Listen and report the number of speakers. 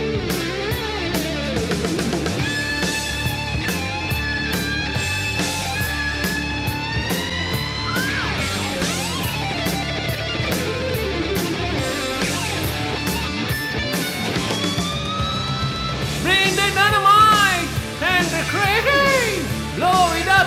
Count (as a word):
one